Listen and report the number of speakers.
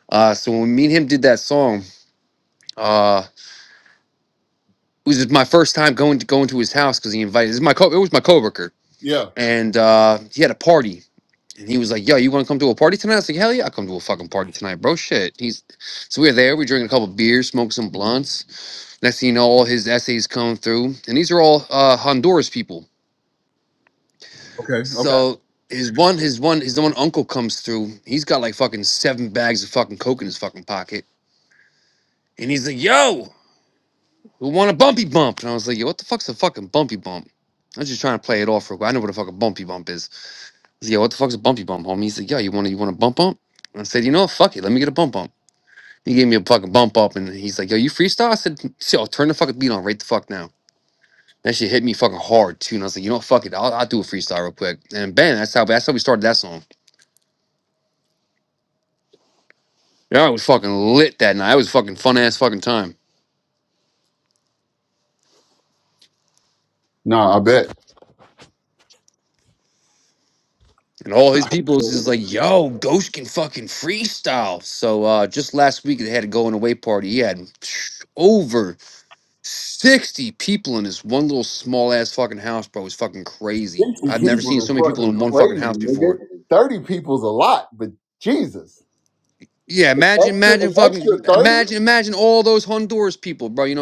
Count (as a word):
two